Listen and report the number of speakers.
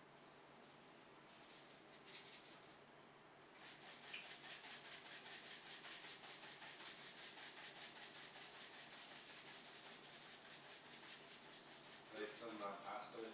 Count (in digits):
1